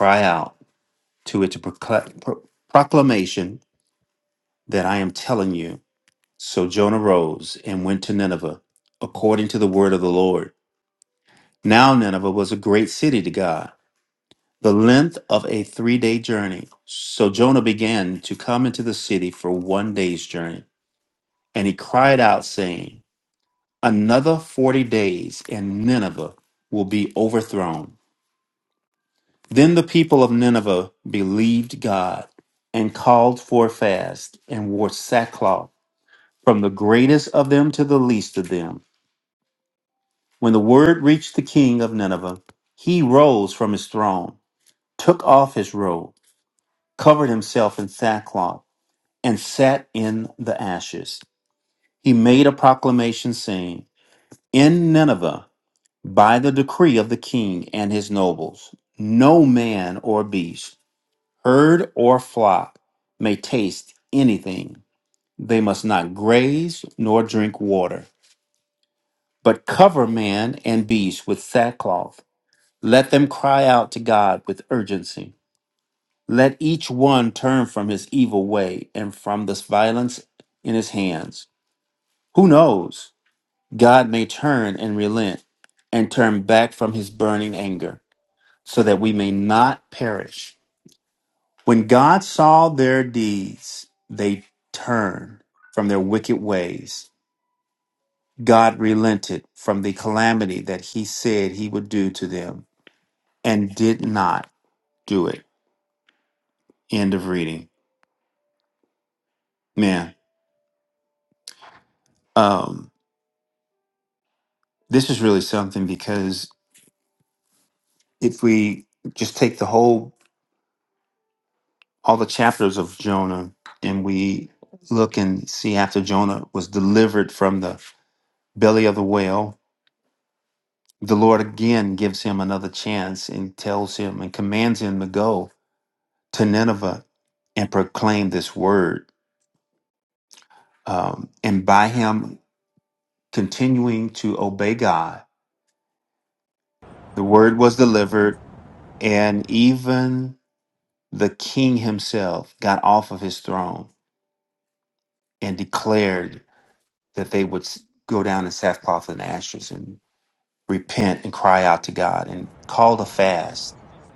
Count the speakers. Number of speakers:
one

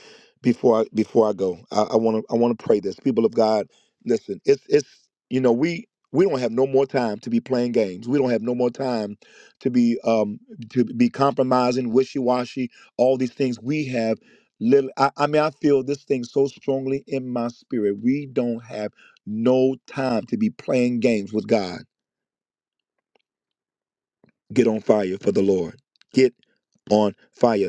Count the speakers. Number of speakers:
one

